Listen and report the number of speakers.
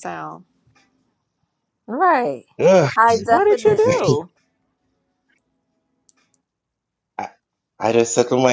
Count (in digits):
3